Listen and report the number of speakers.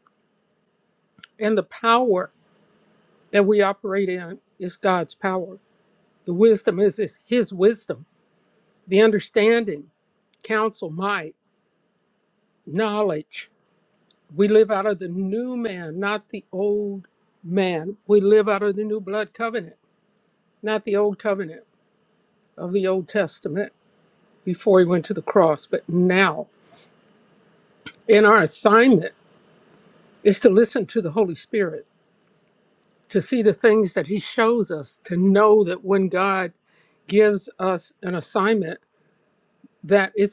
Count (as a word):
one